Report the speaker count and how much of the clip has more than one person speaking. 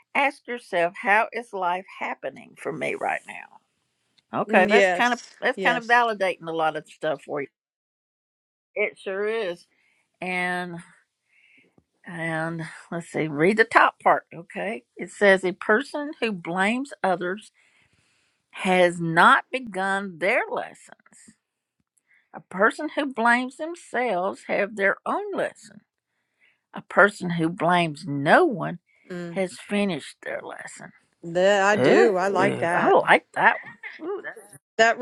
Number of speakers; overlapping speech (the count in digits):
2, about 6%